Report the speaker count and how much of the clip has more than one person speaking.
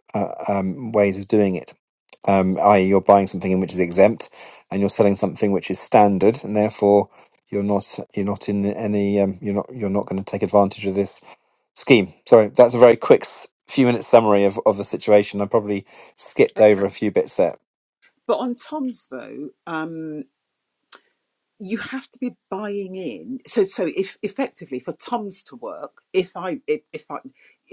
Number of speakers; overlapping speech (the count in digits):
2, no overlap